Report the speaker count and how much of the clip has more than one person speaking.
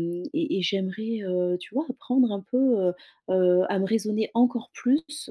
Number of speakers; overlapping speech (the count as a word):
one, no overlap